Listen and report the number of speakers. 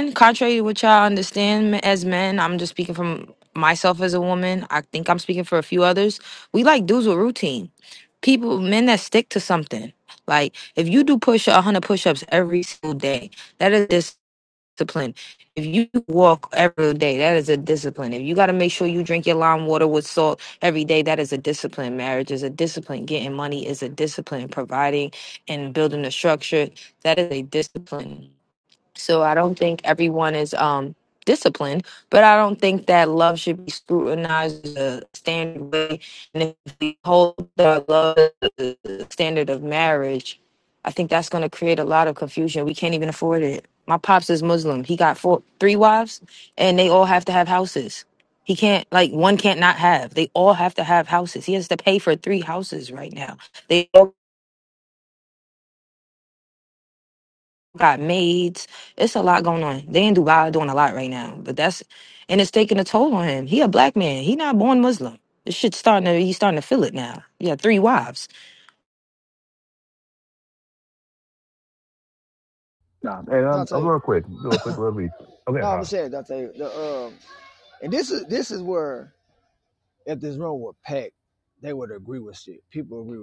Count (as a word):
three